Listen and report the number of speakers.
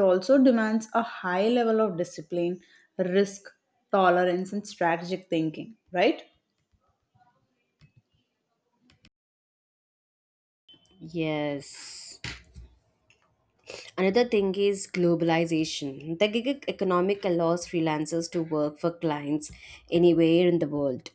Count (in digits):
2